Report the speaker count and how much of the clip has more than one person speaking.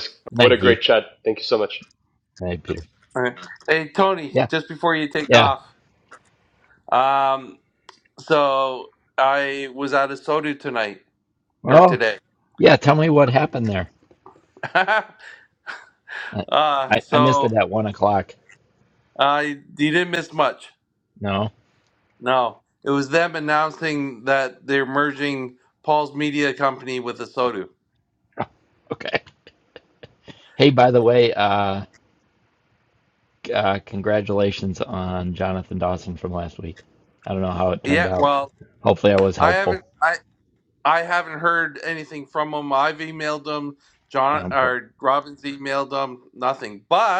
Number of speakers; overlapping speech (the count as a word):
three, about 6%